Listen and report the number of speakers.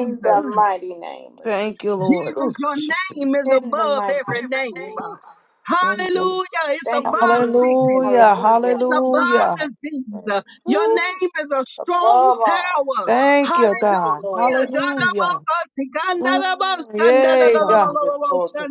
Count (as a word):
three